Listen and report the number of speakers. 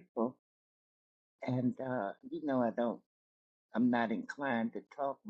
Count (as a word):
one